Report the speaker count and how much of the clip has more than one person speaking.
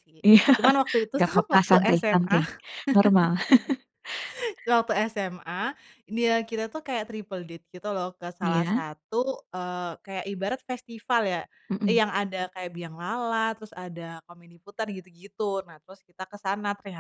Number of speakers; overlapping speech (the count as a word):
two, about 10%